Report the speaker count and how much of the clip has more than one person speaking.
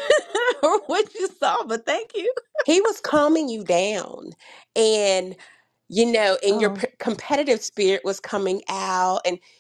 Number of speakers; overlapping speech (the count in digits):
2, about 3%